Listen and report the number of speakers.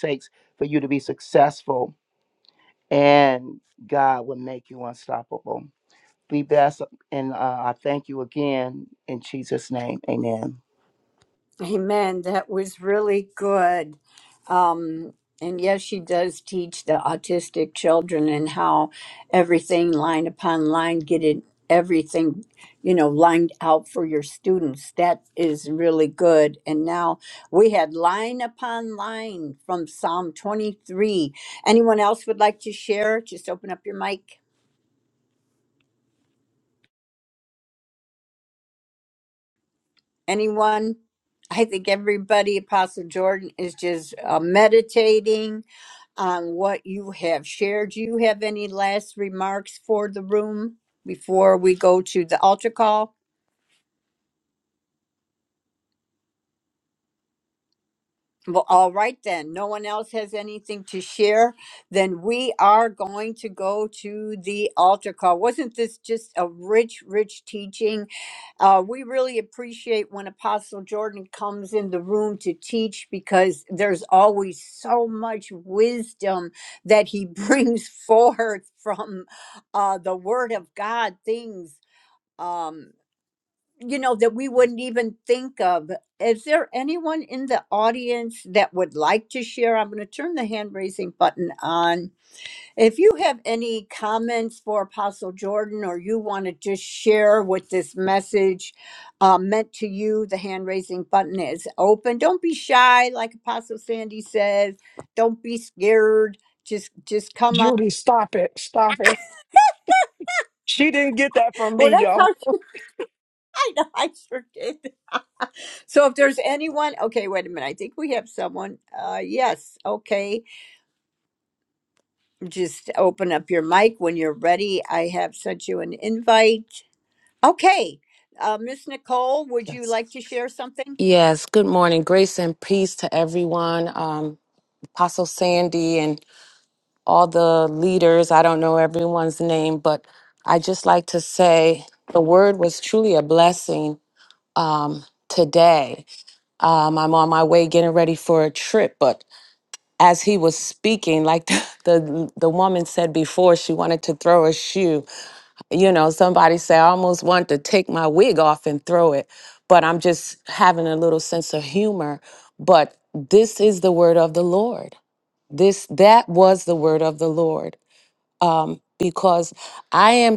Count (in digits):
4